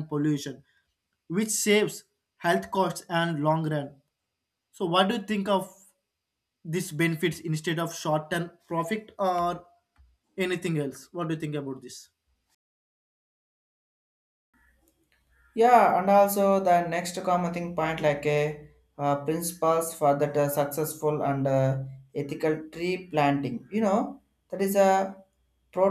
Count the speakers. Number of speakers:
2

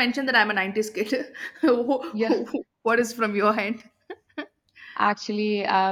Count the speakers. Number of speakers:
2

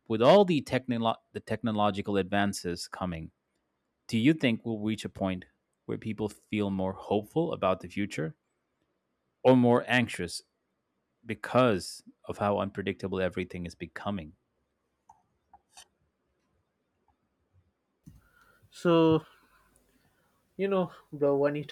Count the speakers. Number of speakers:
2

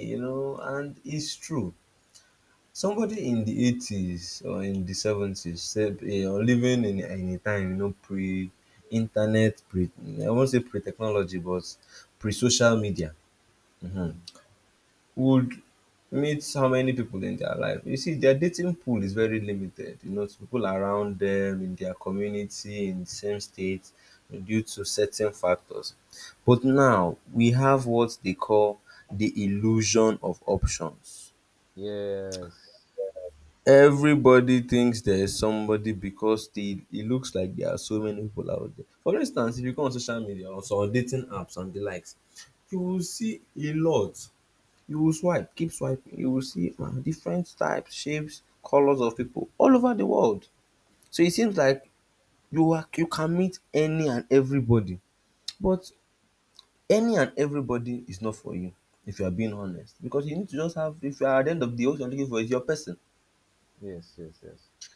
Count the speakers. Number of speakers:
2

